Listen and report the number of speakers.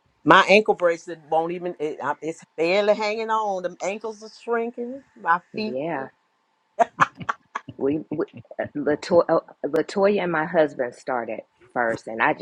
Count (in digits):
2